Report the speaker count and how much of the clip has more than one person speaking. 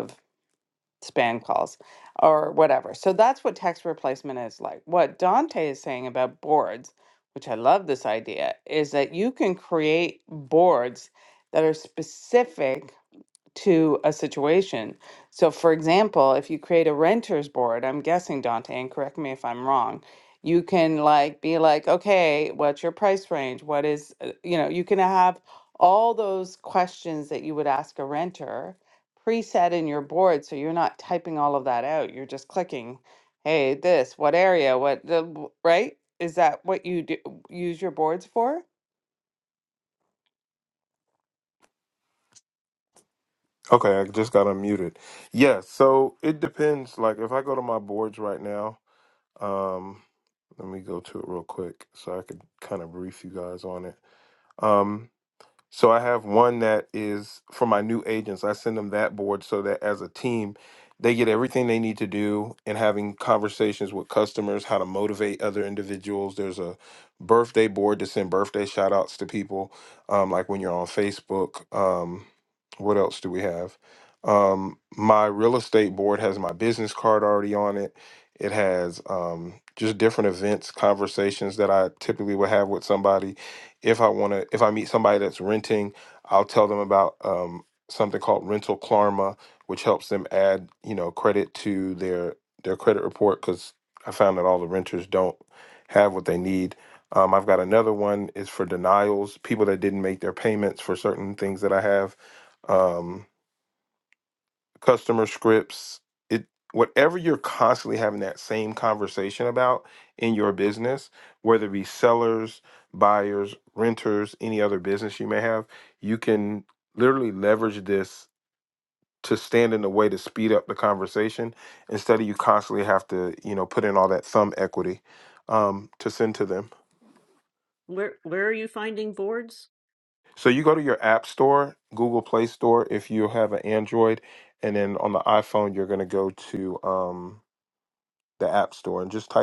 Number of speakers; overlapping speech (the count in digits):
3, no overlap